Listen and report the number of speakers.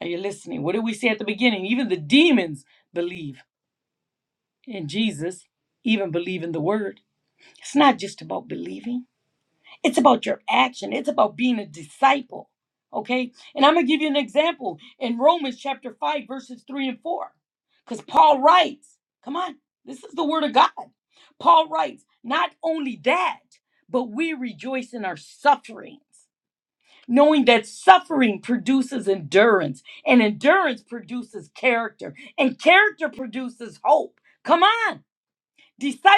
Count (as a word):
one